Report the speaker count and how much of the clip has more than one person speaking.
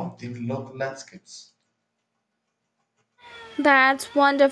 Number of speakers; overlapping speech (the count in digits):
2, no overlap